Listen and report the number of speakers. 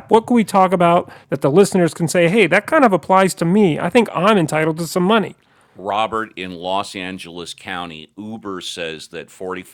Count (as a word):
two